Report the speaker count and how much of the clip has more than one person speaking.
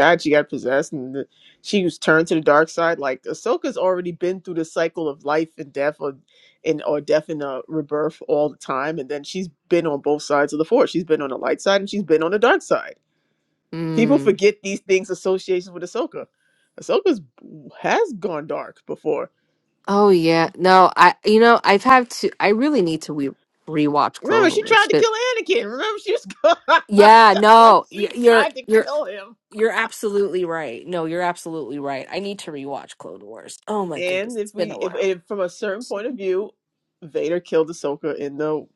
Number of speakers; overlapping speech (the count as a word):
two, about 10%